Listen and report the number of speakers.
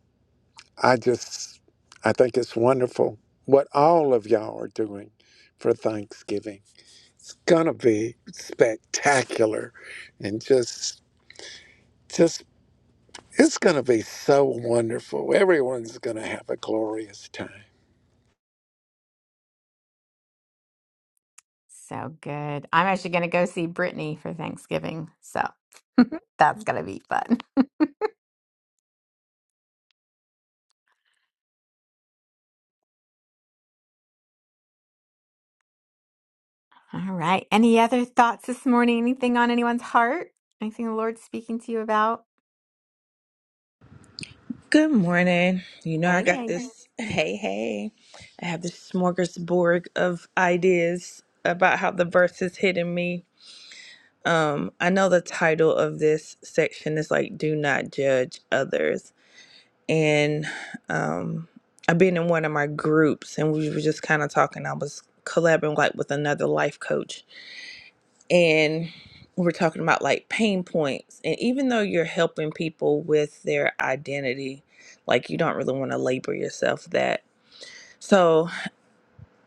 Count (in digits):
3